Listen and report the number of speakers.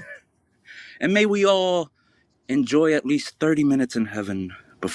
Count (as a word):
one